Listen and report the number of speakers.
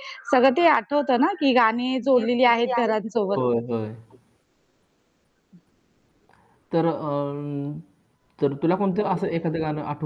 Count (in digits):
2